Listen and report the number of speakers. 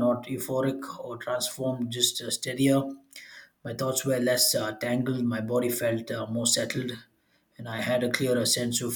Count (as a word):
one